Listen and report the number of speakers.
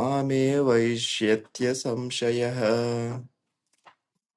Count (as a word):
one